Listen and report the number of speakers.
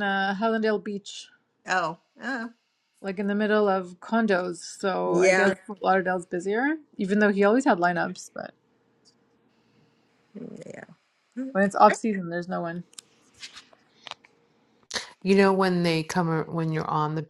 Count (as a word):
three